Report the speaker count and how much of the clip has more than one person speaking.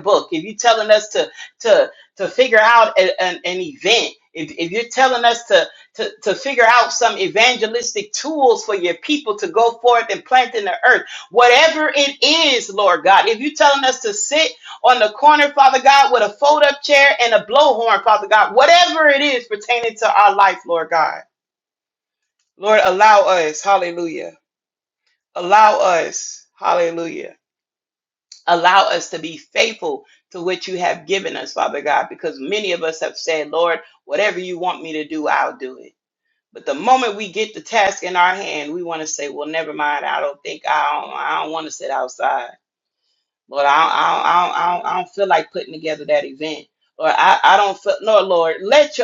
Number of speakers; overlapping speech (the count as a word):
one, no overlap